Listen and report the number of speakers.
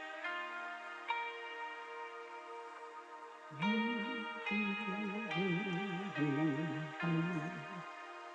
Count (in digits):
0